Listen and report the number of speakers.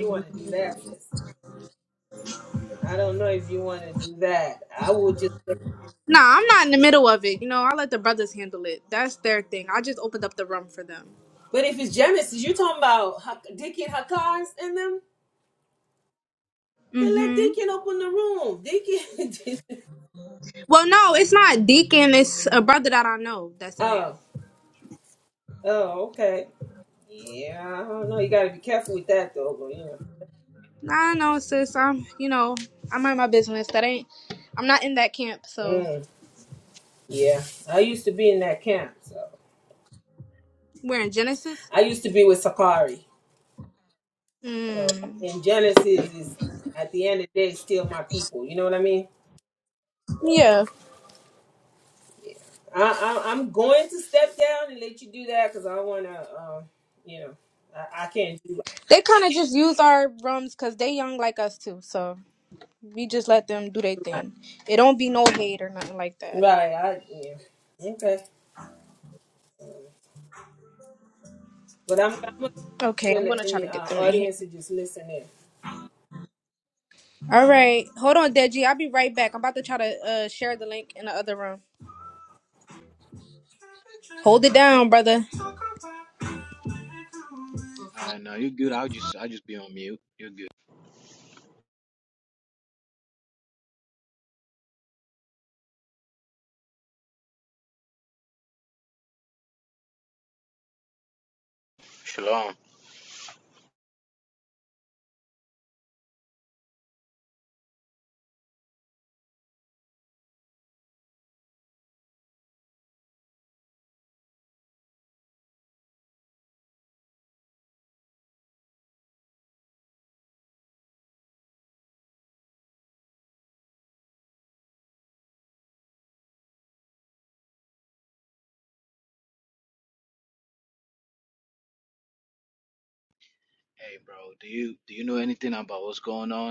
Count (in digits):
3